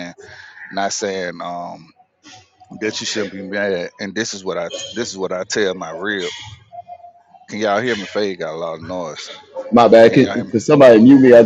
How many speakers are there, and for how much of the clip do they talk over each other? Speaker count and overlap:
2, about 4%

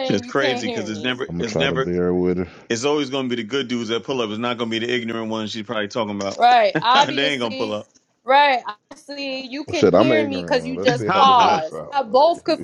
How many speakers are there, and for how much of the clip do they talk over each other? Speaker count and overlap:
3, about 45%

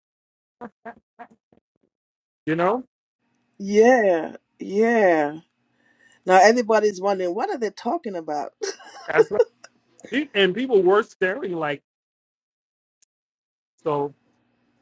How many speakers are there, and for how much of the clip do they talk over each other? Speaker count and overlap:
2, no overlap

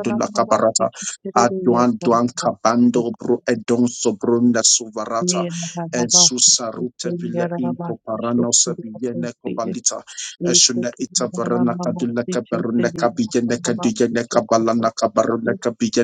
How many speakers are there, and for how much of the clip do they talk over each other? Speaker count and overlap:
2, about 53%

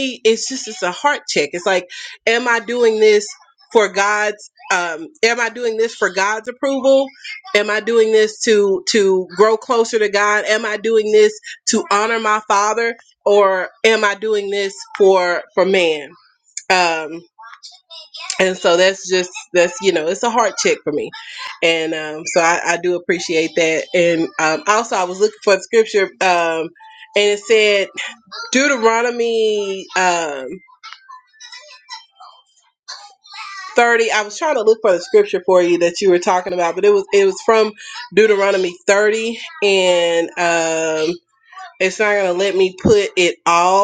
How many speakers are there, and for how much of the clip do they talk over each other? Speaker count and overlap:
1, no overlap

